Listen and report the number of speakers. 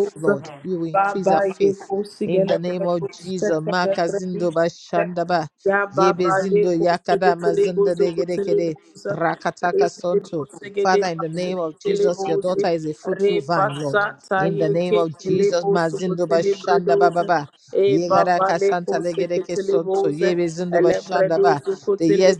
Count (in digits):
2